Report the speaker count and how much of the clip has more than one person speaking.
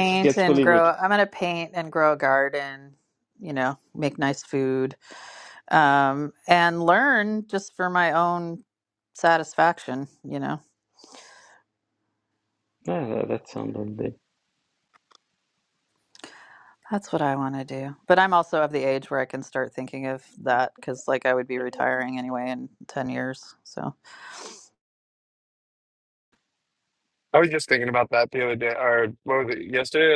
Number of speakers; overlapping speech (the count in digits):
3, about 3%